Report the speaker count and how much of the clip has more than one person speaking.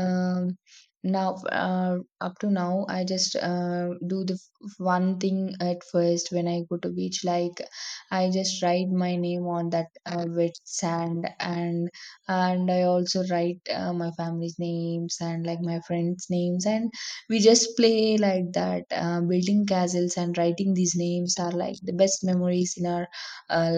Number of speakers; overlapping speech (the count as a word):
one, no overlap